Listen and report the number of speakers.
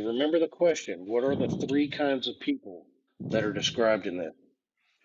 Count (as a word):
one